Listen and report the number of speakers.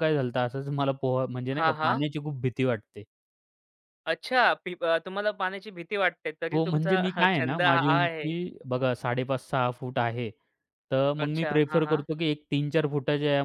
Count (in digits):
2